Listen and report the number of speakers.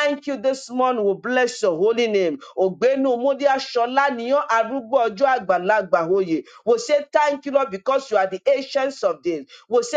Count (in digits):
1